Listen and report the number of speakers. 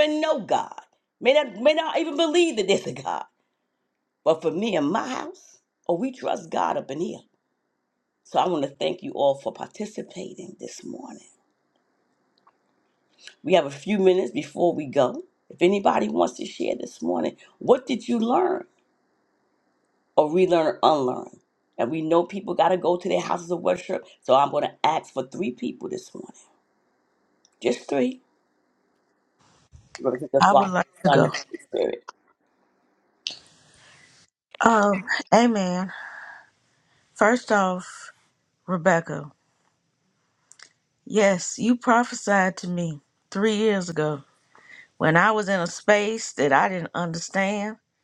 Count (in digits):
2